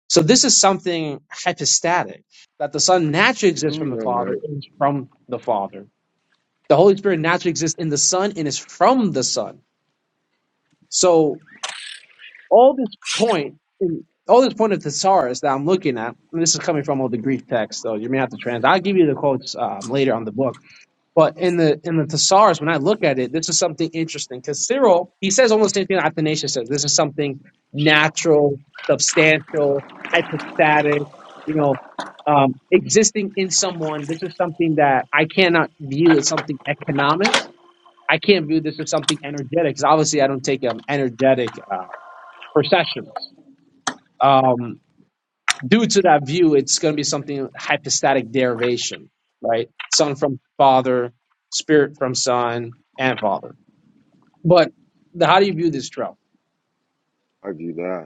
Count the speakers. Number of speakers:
two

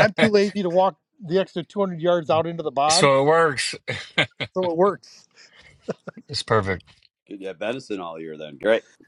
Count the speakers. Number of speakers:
three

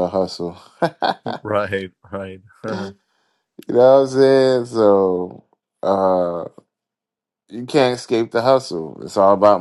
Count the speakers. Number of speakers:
two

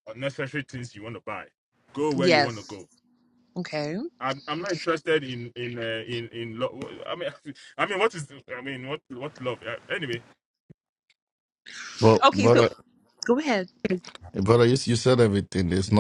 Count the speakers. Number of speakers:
three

